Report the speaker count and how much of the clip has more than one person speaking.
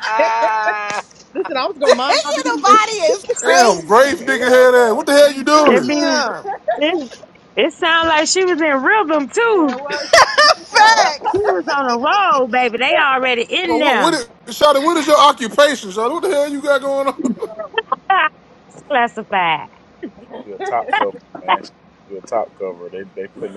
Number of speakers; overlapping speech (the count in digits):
5, about 18%